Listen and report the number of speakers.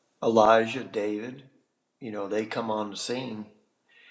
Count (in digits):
1